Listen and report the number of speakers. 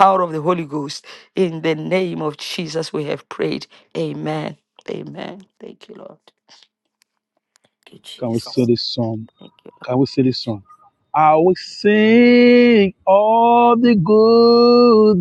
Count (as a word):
two